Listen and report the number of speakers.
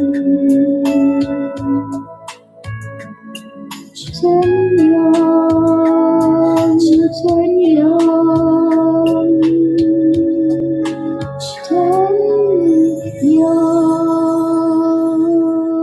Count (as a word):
one